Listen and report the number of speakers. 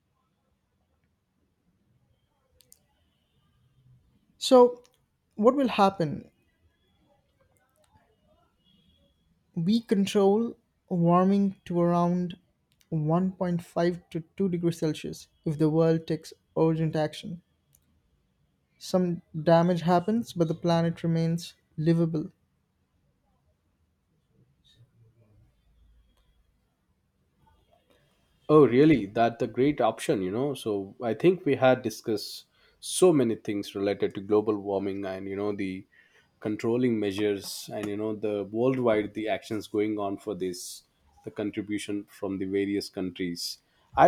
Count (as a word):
two